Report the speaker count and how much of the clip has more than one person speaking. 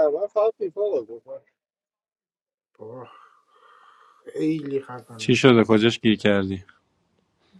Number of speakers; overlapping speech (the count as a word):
three, about 6%